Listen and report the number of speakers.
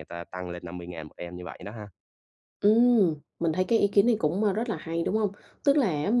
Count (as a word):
two